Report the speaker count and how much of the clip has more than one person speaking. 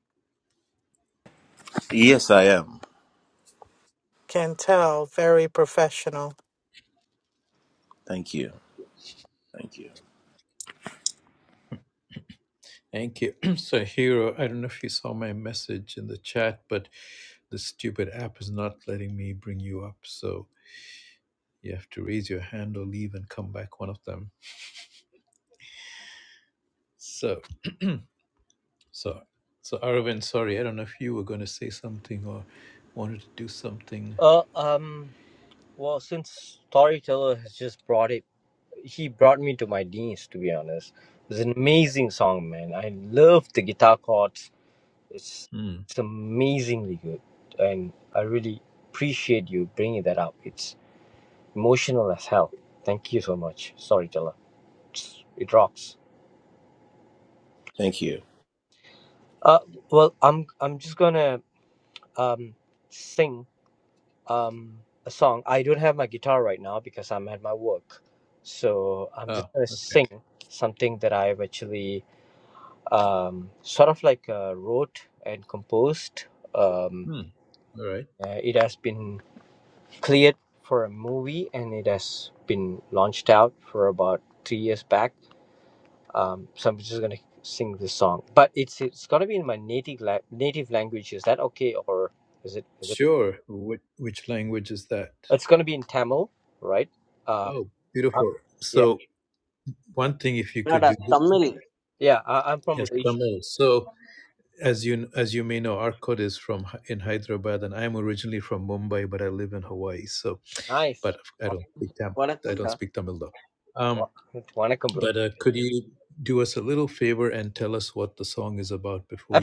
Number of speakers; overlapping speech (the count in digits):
5, about 2%